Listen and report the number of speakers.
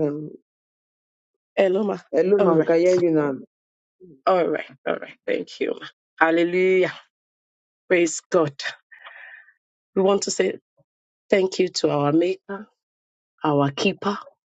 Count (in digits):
2